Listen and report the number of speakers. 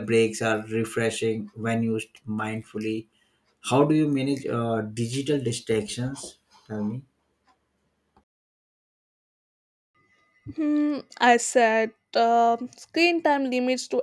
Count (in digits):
2